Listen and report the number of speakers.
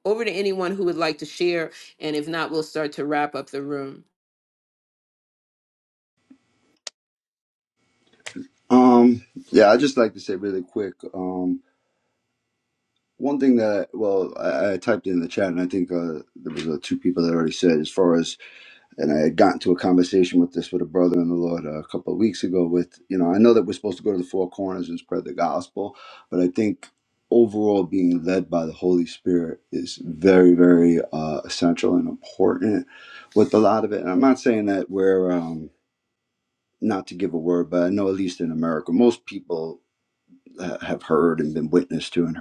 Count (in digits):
2